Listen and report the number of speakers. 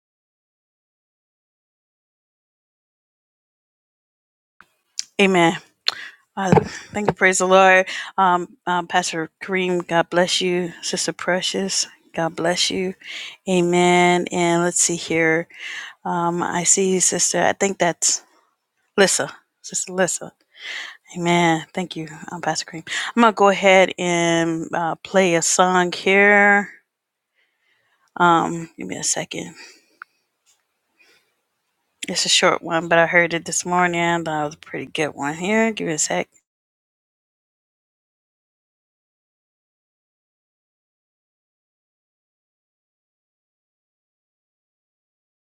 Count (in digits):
1